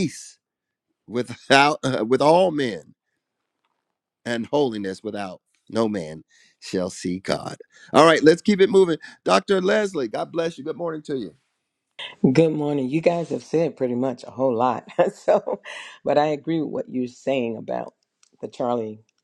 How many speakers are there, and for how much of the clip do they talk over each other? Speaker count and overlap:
2, no overlap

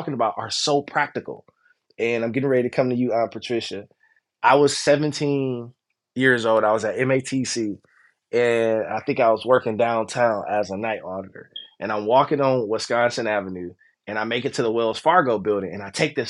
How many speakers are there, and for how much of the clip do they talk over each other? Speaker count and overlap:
1, no overlap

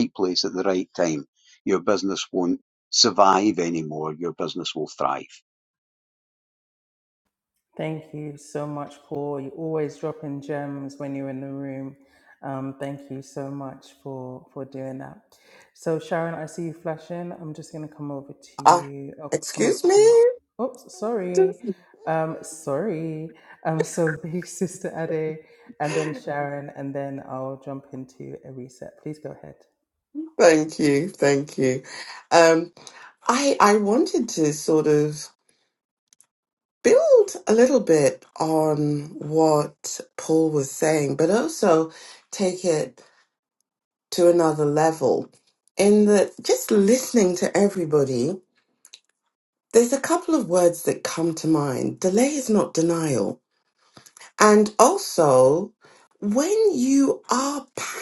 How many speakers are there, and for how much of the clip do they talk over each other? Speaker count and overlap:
3, about 3%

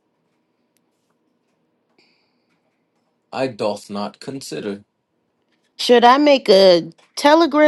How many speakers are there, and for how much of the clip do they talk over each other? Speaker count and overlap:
2, no overlap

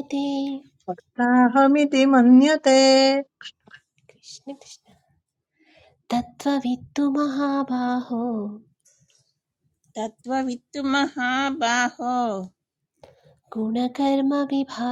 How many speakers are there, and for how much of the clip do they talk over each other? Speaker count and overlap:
3, no overlap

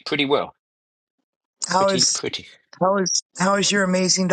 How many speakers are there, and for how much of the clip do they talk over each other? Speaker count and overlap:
2, about 9%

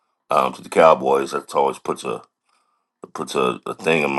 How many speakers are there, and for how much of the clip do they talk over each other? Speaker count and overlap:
1, no overlap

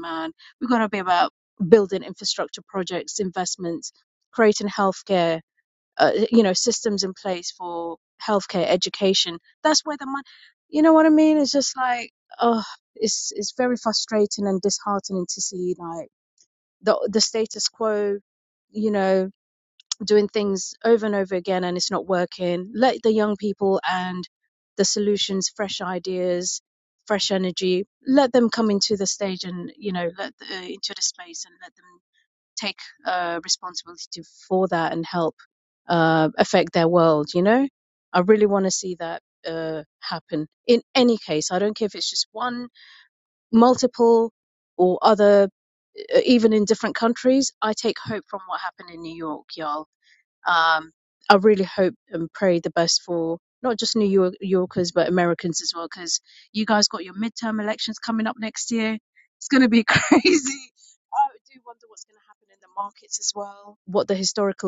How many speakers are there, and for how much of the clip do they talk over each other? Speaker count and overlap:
1, no overlap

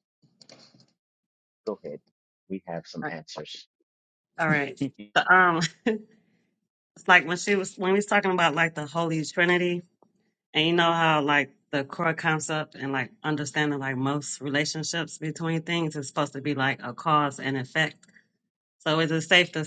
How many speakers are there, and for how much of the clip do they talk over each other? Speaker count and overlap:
2, about 1%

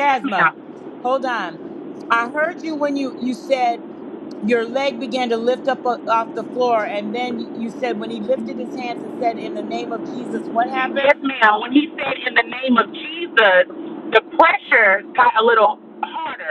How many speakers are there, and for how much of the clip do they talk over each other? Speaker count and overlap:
2, about 5%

